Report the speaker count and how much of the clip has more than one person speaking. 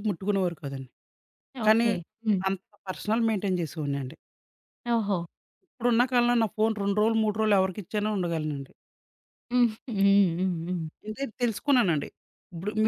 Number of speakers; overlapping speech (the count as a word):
two, about 3%